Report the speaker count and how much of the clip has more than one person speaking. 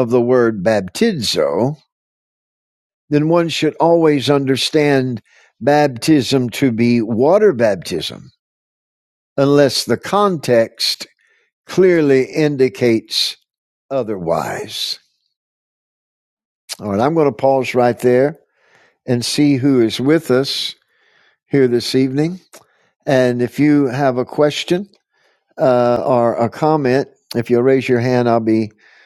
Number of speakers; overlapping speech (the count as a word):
one, no overlap